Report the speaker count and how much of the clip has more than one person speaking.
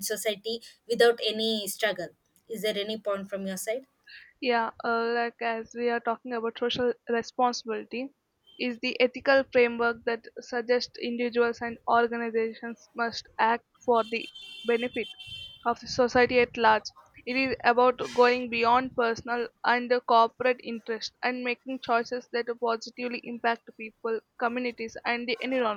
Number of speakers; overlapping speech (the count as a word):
two, no overlap